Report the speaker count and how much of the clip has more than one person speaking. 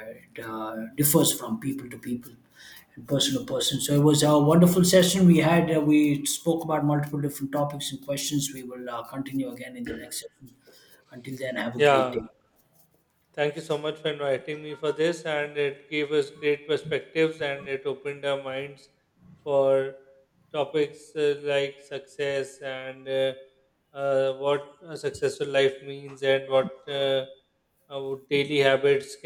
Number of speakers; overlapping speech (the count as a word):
two, about 2%